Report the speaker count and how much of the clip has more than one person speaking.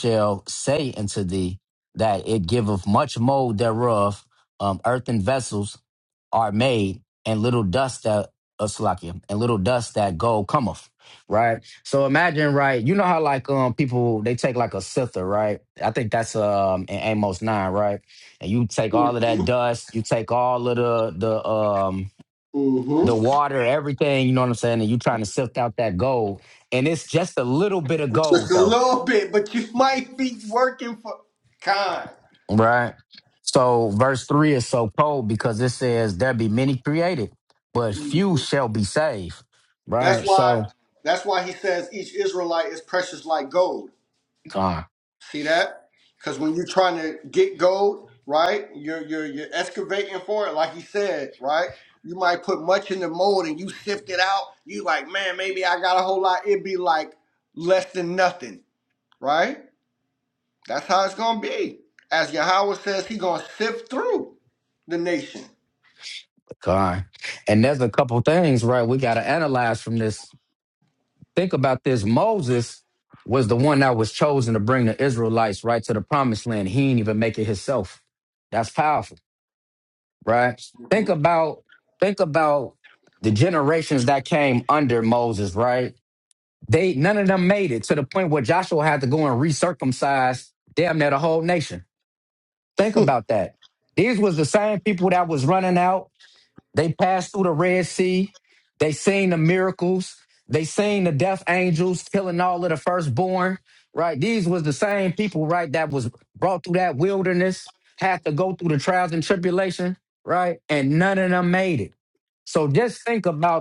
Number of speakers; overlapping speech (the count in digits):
2, about 2%